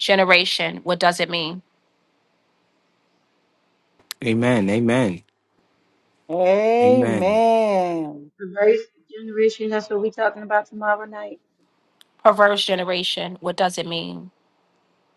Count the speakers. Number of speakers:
four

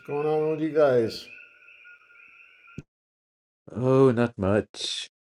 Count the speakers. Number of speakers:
two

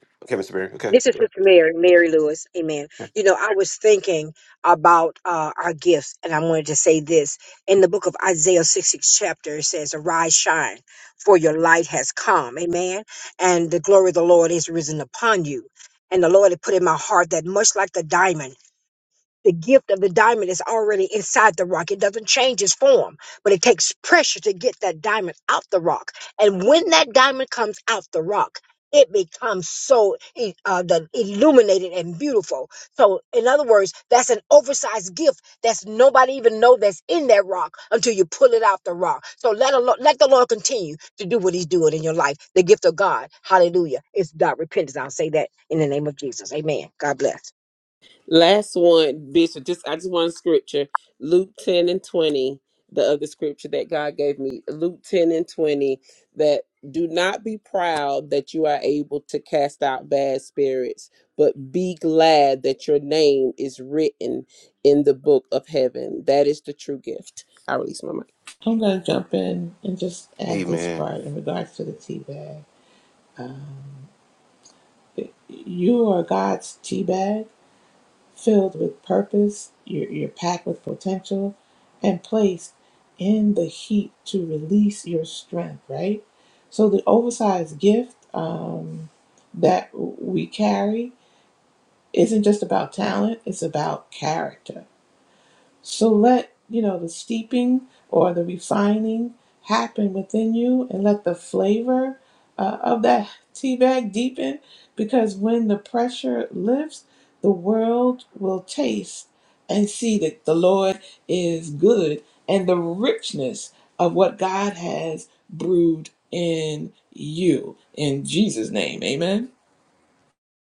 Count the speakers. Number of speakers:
four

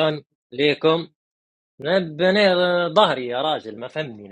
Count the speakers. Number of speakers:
one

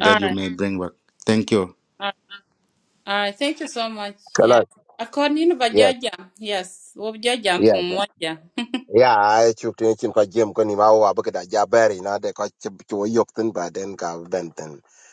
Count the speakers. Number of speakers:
three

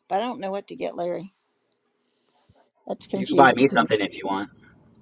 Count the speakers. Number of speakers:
two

